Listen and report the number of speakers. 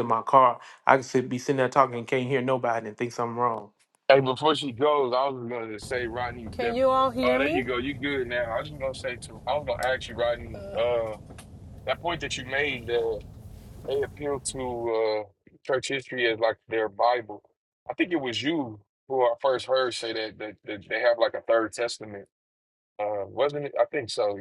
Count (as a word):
three